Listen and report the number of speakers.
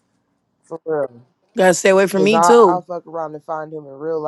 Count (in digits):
2